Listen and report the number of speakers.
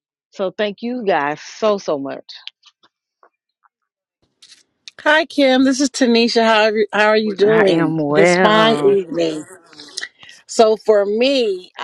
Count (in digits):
2